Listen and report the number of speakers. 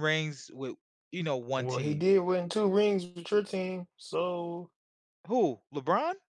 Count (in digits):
2